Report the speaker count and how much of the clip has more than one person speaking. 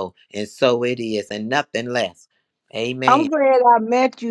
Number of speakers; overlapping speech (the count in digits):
2, about 5%